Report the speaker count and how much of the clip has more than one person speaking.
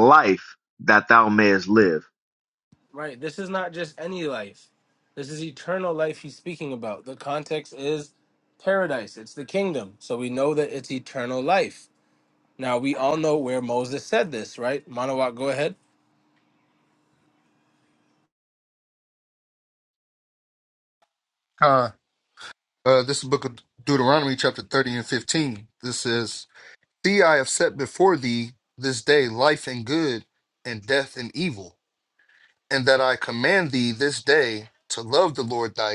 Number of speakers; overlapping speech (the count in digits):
3, no overlap